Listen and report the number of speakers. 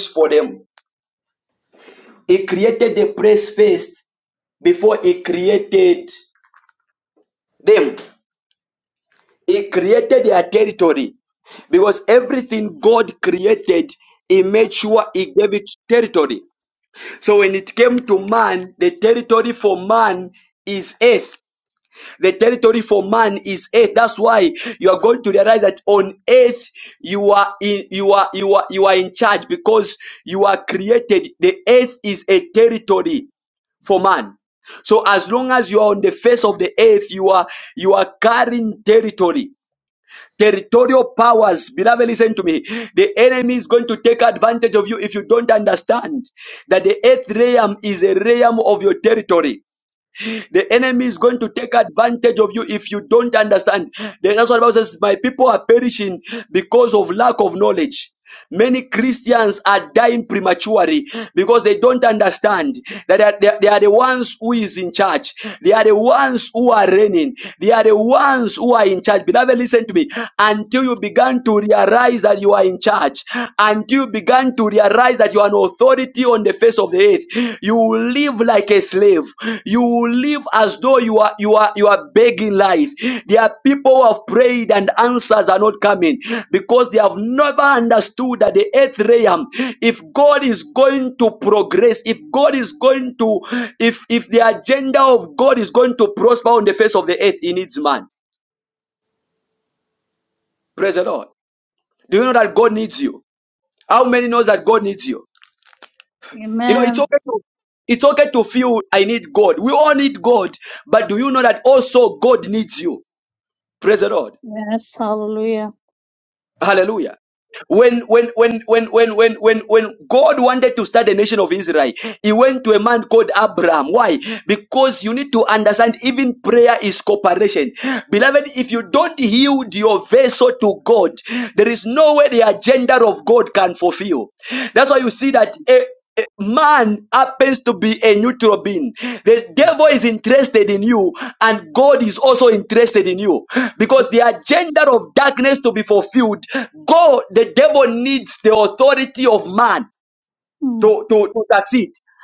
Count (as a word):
two